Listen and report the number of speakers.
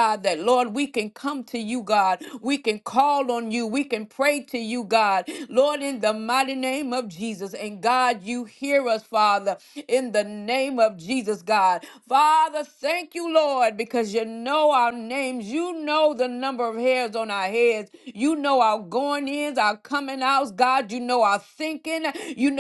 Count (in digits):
1